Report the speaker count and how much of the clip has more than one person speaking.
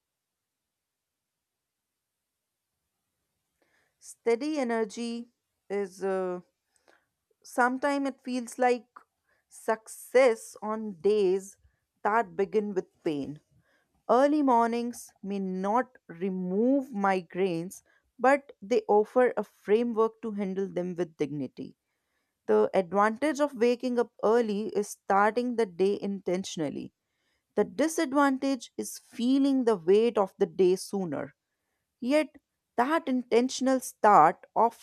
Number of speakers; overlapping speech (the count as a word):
one, no overlap